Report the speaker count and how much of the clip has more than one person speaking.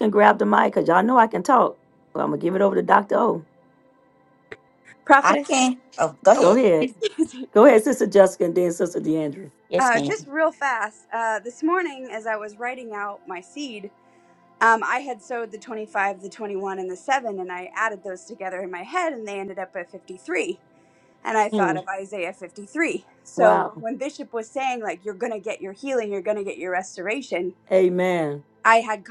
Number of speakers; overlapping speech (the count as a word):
three, about 5%